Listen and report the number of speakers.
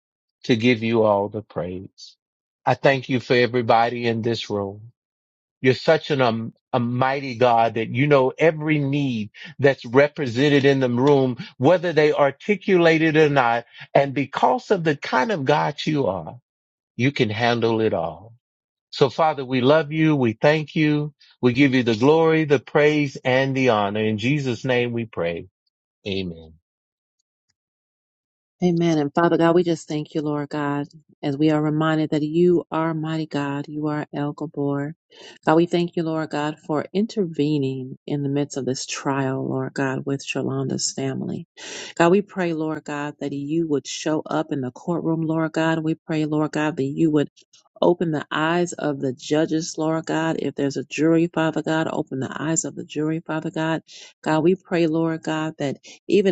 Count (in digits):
2